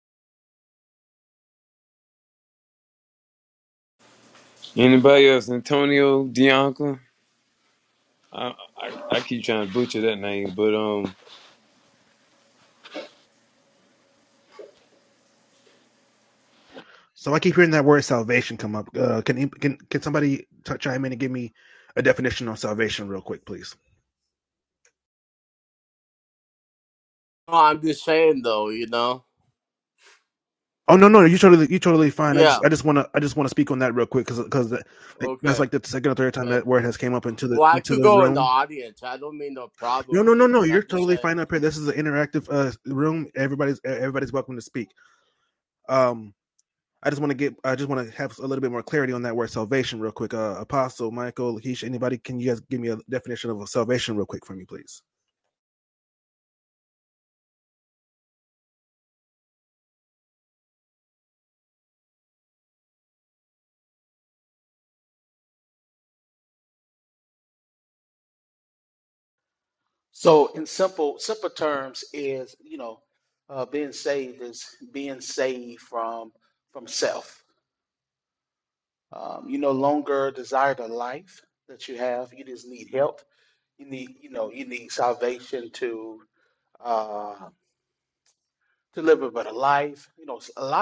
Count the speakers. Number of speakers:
four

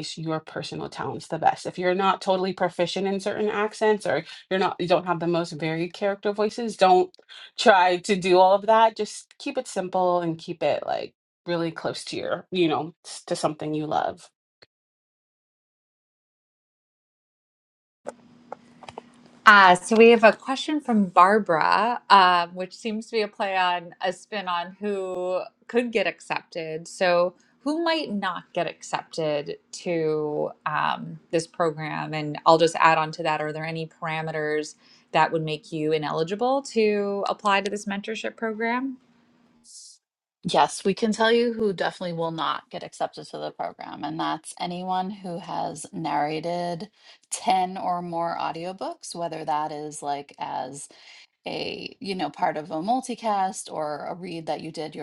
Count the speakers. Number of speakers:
three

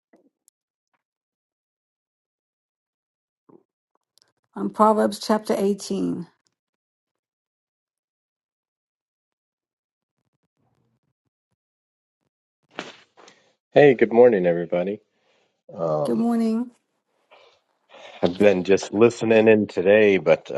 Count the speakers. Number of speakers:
two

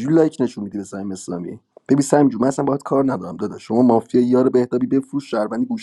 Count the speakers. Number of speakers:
one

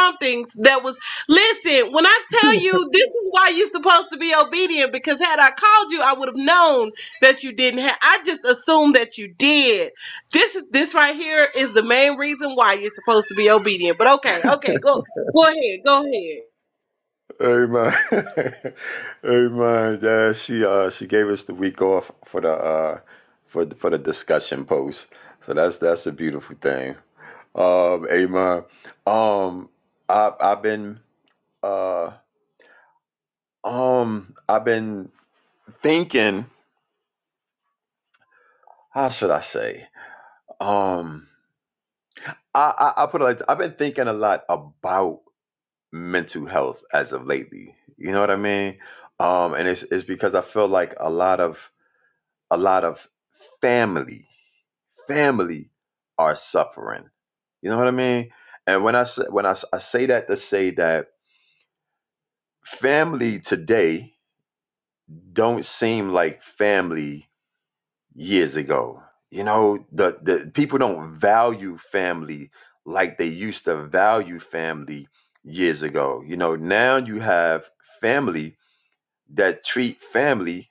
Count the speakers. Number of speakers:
two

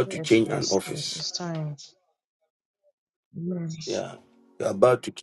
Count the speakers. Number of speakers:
two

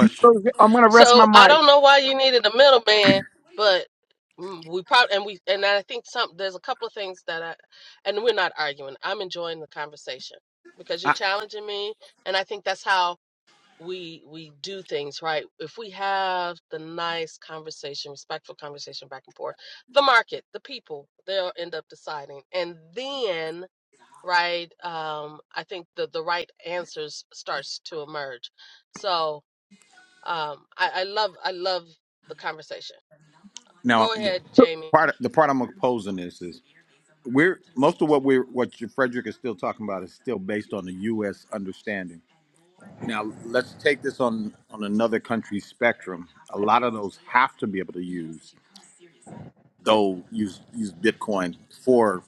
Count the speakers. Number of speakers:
three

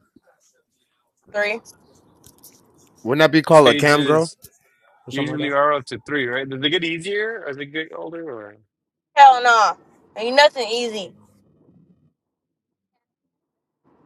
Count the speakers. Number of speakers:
three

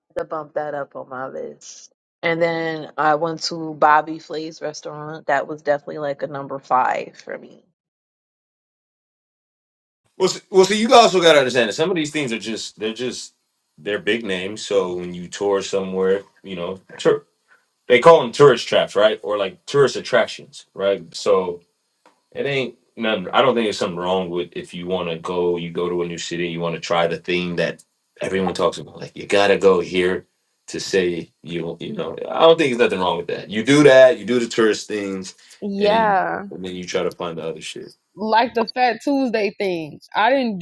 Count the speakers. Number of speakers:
three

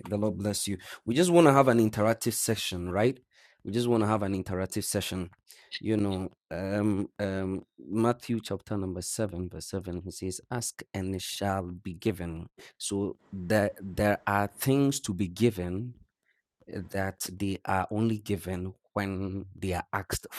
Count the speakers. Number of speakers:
one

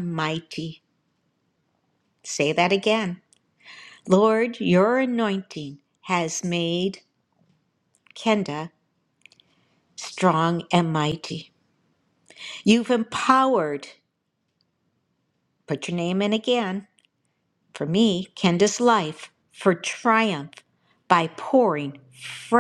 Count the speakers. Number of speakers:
one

